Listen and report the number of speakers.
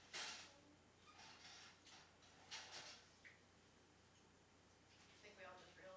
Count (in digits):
1